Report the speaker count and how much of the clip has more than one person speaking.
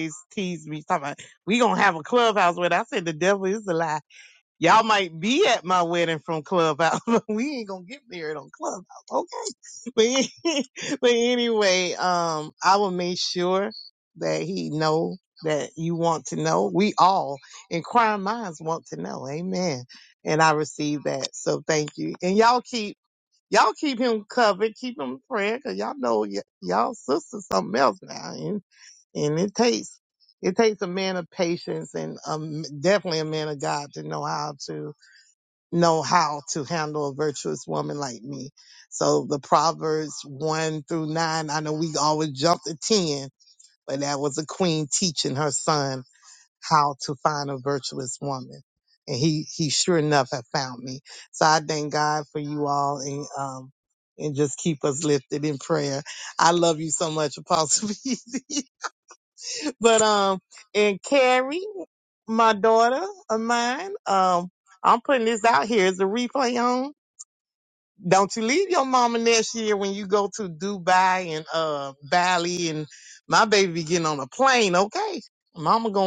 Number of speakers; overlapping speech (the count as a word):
one, no overlap